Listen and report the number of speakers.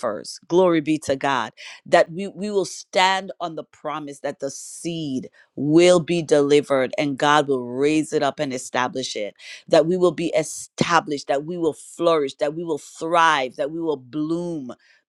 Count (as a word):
one